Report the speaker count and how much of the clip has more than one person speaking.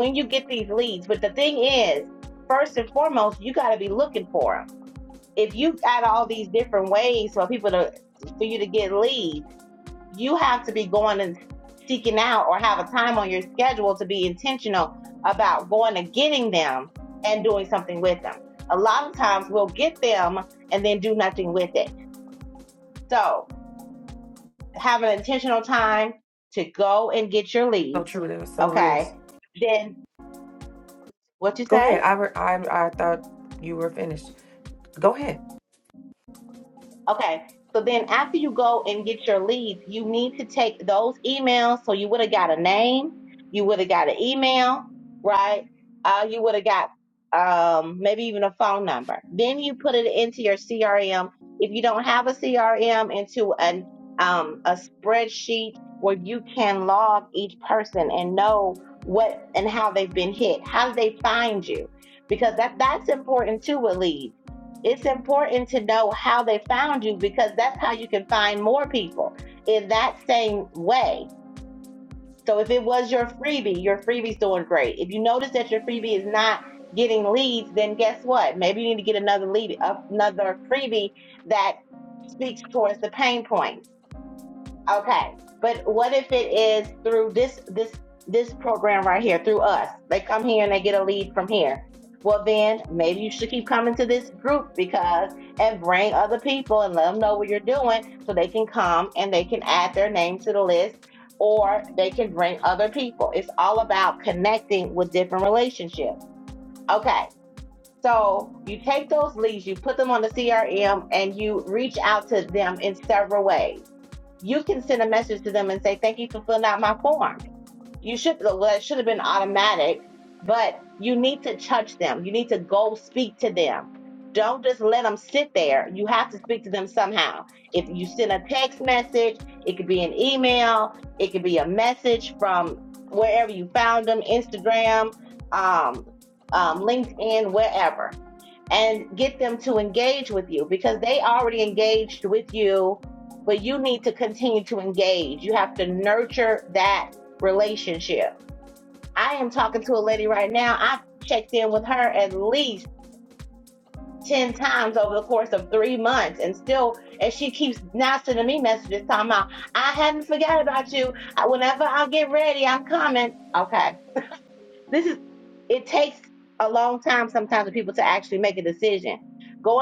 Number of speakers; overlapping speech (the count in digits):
2, about 1%